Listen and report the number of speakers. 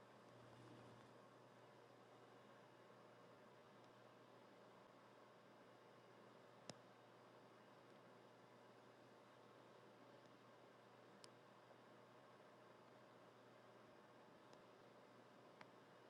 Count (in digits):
0